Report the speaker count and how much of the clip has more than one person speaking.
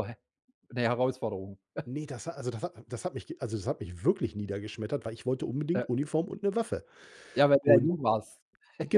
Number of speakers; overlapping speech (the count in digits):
2, about 4%